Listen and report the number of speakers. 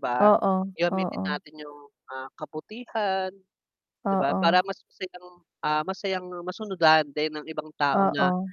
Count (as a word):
two